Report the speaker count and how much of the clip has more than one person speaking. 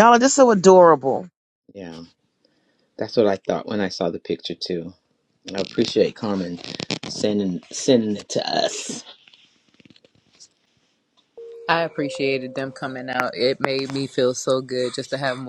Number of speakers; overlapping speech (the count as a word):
three, no overlap